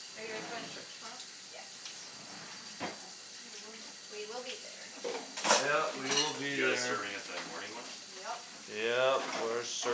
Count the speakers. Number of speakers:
4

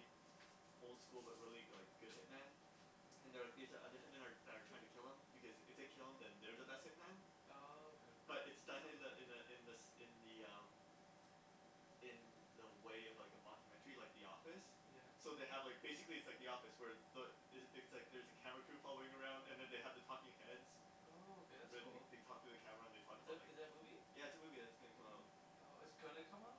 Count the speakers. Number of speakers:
2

